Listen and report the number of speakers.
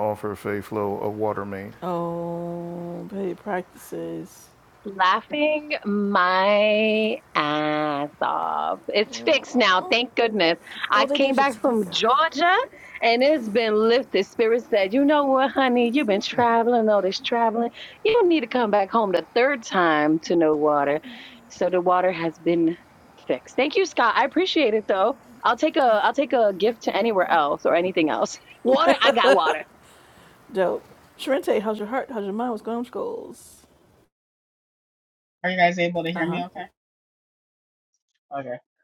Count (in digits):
4